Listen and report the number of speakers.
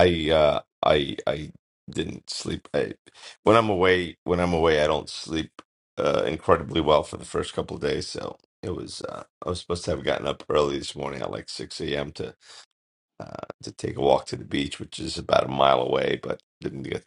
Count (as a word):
one